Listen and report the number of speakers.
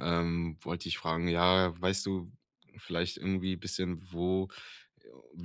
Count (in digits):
1